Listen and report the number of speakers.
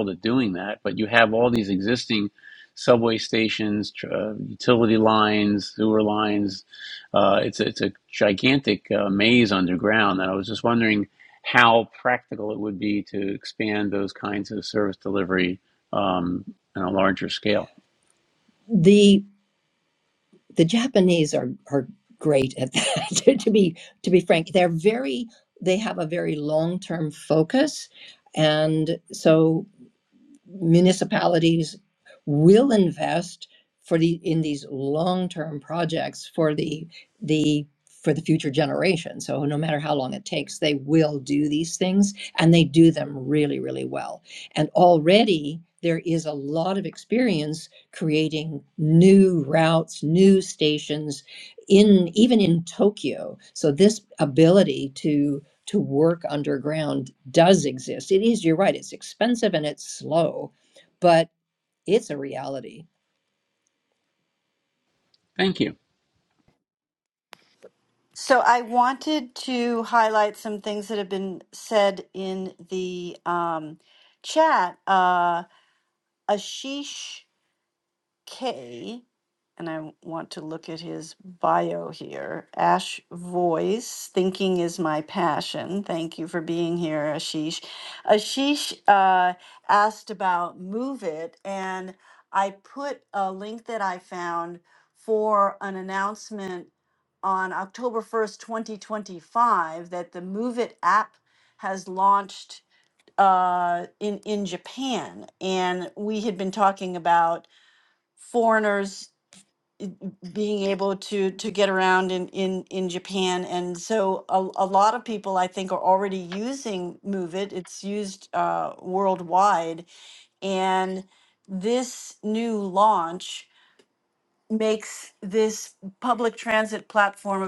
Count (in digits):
3